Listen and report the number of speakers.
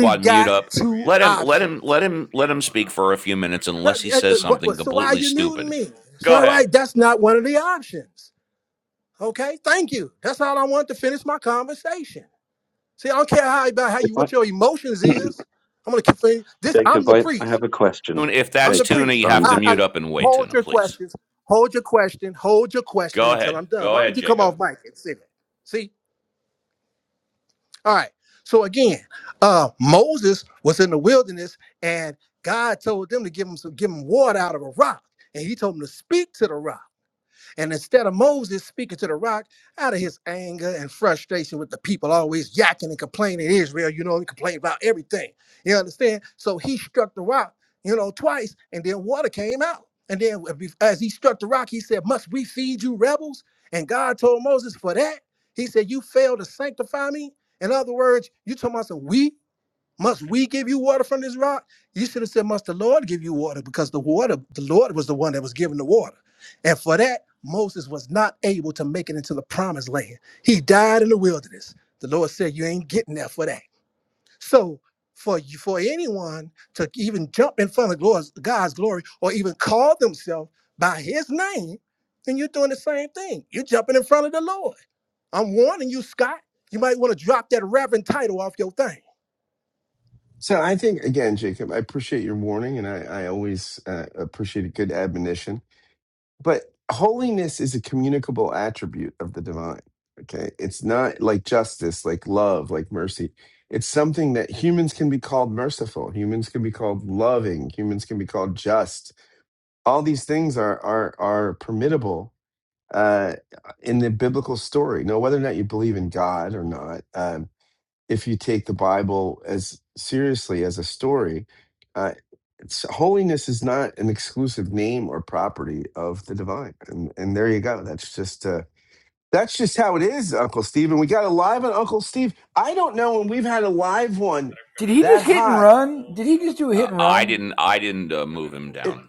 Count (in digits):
5